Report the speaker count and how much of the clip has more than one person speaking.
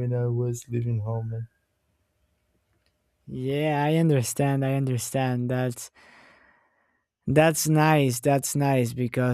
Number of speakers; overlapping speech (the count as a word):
two, no overlap